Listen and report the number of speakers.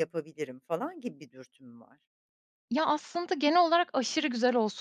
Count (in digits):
2